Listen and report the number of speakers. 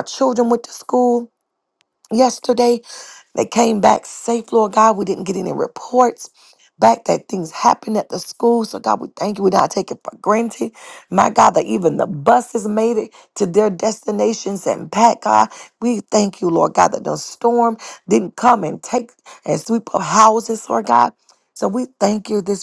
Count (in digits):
1